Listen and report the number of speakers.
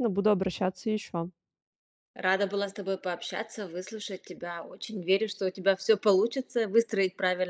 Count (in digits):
2